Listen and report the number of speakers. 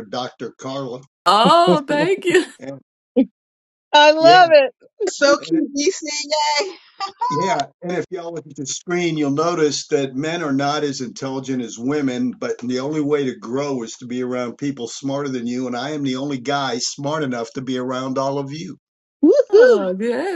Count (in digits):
4